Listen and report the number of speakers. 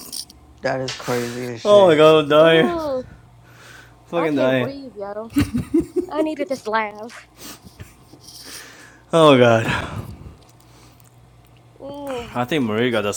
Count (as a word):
three